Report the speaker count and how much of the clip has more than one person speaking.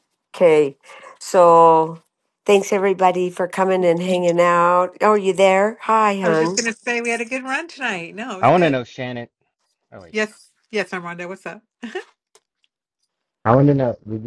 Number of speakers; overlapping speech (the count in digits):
3, about 5%